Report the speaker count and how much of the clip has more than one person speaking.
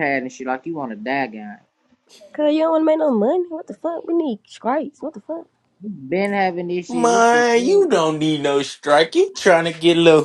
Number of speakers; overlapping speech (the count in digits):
3, about 10%